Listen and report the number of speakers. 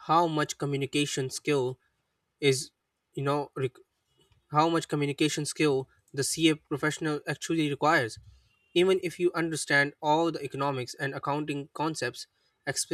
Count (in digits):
1